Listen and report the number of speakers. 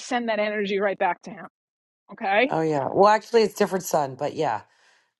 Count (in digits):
2